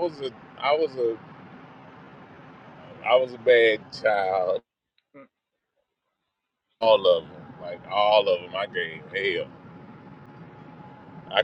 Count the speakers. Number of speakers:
1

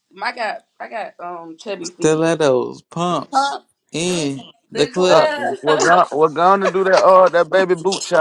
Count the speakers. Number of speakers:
3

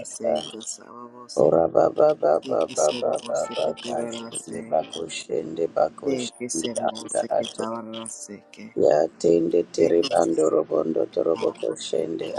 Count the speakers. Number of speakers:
2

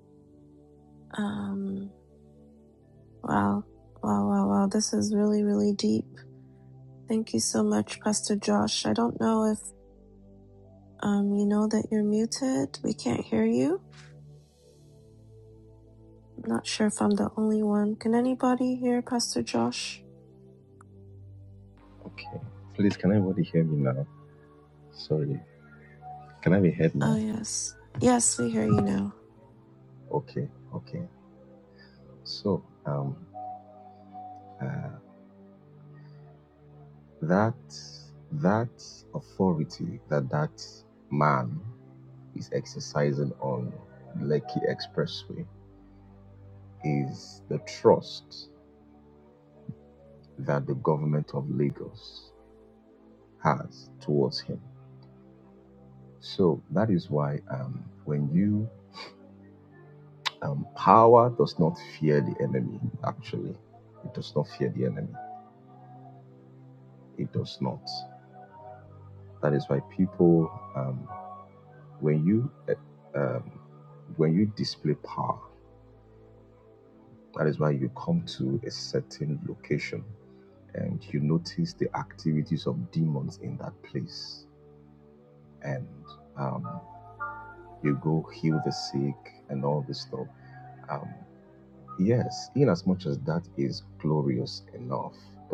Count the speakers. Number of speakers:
2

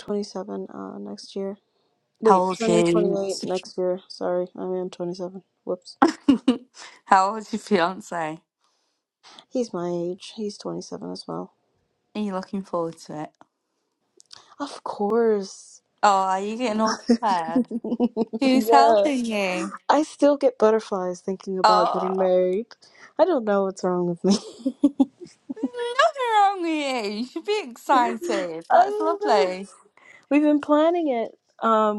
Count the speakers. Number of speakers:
2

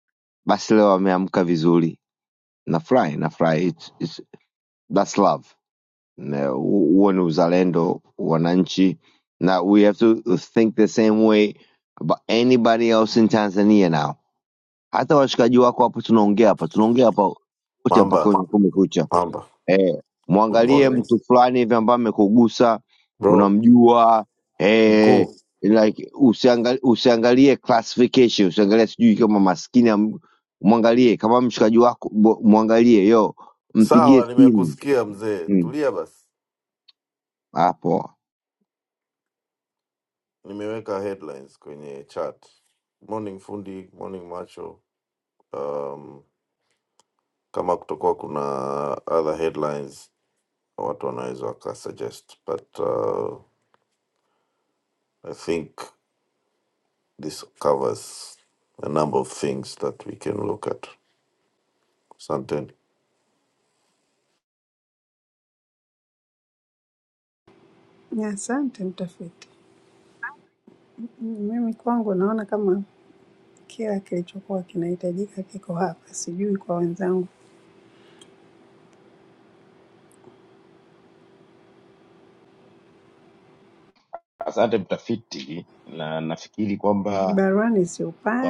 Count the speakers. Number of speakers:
4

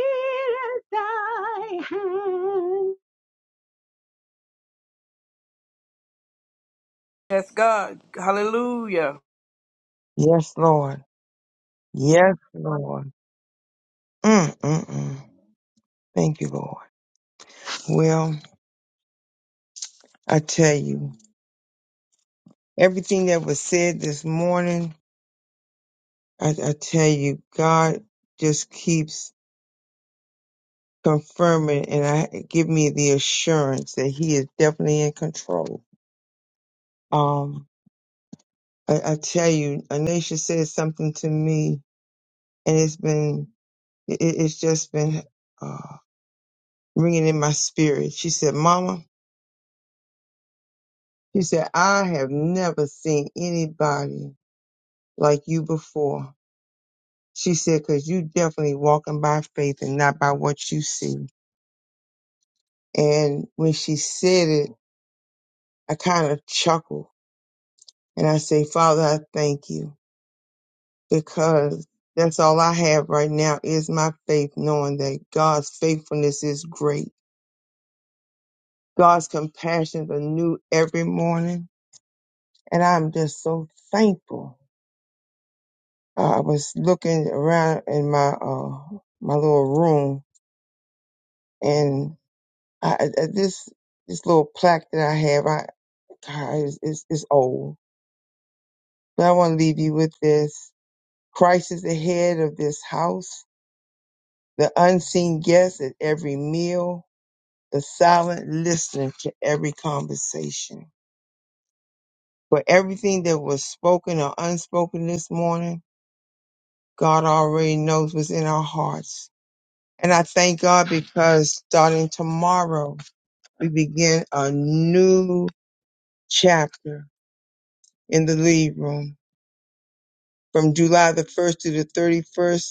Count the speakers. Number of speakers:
3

